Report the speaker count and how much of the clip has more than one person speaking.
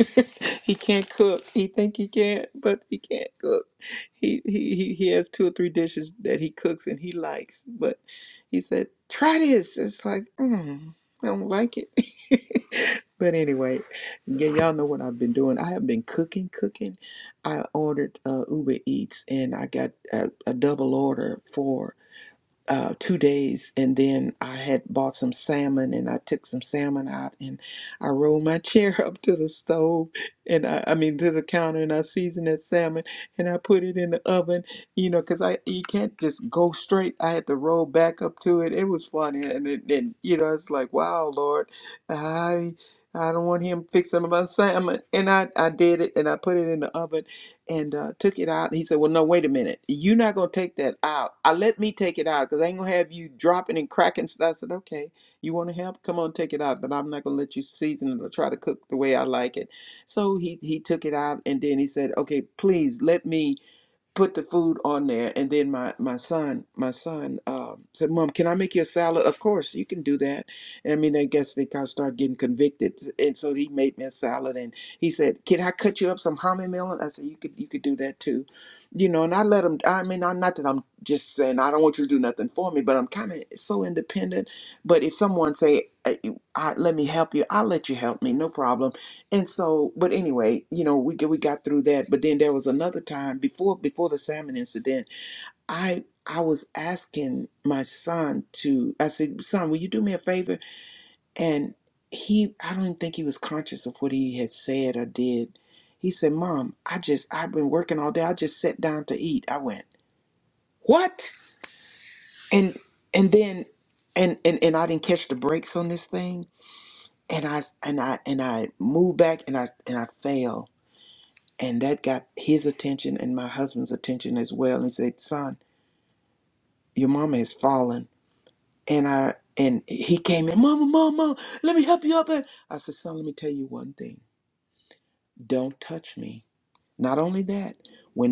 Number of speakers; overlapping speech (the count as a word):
one, no overlap